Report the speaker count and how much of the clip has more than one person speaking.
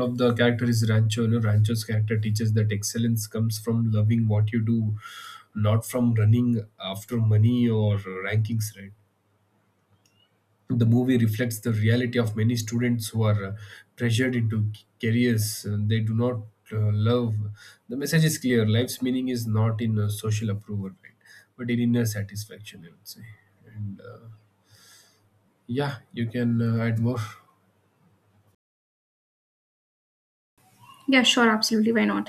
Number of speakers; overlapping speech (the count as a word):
two, no overlap